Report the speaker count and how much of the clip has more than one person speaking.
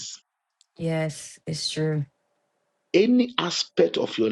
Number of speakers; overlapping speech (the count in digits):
2, no overlap